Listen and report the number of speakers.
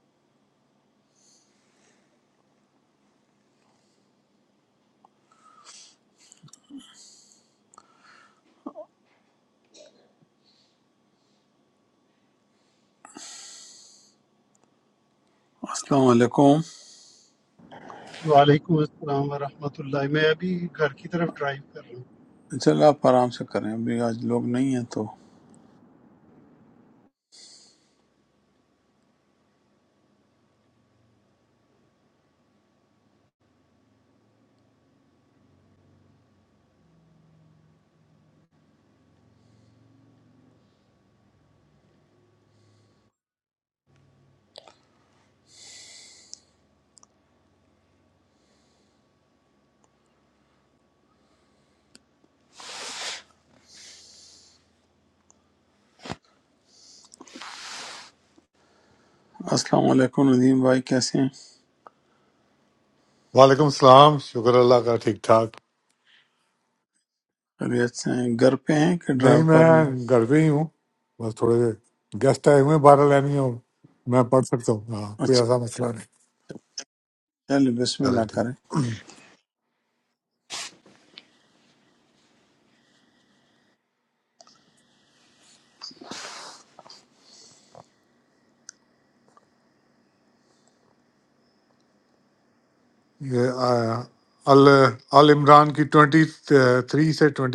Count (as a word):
three